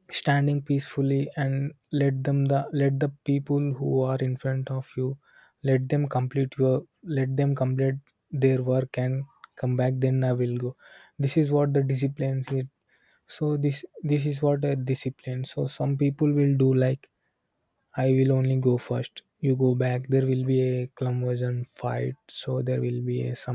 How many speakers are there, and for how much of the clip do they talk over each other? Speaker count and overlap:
1, no overlap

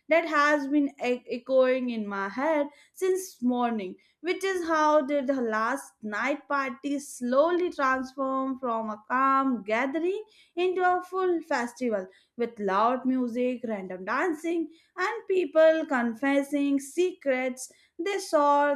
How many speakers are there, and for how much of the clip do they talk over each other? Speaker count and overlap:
1, no overlap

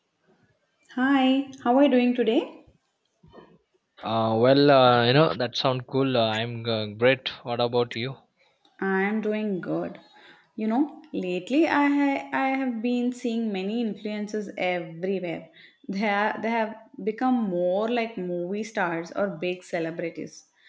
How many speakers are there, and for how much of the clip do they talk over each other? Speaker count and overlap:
2, no overlap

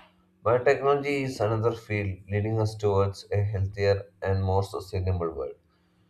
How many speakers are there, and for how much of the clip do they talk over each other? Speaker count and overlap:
1, no overlap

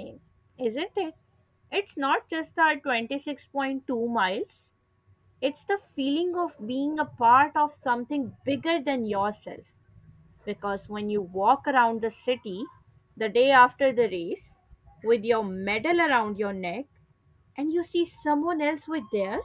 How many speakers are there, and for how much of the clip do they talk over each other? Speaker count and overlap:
1, no overlap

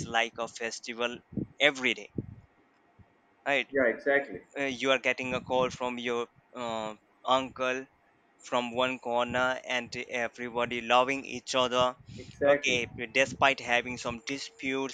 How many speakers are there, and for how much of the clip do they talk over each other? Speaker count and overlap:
2, about 2%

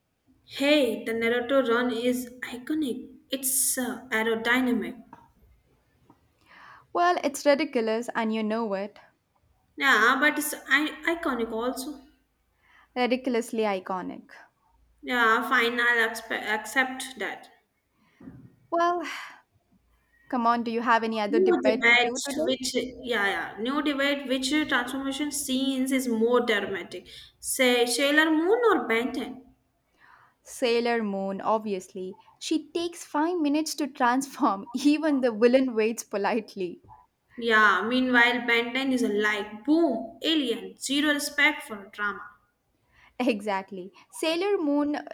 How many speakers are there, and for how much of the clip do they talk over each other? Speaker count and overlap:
2, about 3%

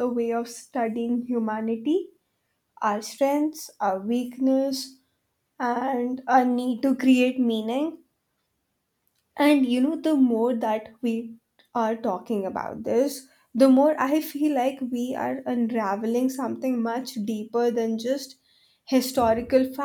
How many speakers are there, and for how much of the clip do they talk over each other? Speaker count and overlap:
1, no overlap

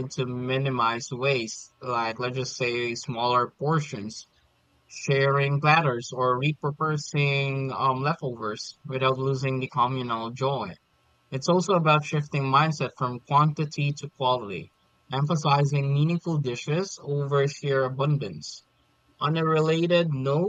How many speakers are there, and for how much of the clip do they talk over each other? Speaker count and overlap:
1, no overlap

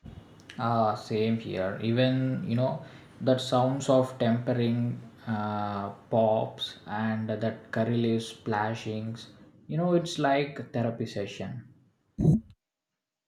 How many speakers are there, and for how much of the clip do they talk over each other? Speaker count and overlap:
1, no overlap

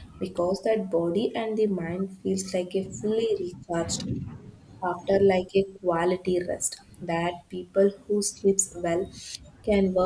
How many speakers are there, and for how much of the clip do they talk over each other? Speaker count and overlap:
1, no overlap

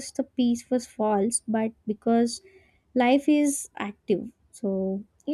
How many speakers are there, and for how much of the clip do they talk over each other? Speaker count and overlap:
1, no overlap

